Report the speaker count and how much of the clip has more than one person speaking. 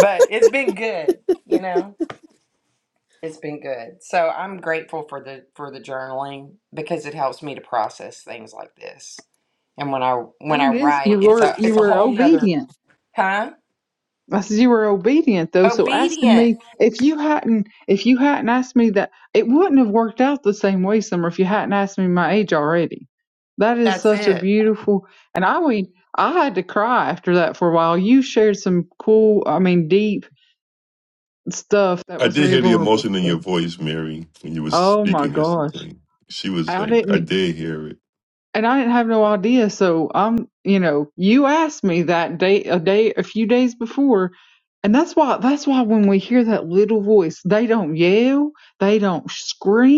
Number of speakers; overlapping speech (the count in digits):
3, about 13%